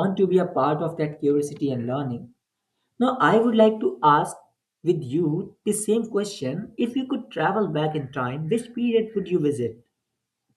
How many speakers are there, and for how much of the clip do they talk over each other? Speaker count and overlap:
1, no overlap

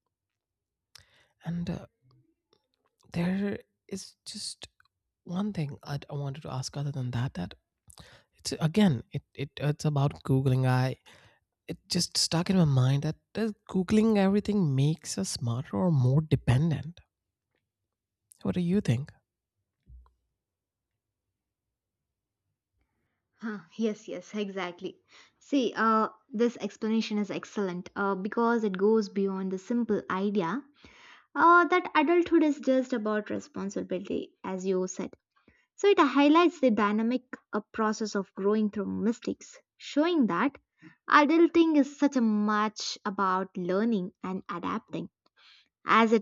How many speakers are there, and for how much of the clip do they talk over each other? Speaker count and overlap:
2, no overlap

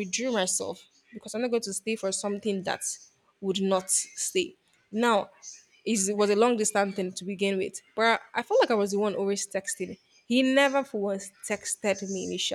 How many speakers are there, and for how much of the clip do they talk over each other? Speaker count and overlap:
1, no overlap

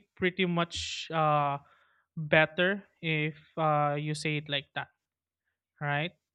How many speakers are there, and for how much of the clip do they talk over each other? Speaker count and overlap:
1, no overlap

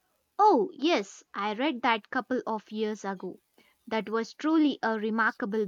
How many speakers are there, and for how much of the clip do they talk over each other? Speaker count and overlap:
1, no overlap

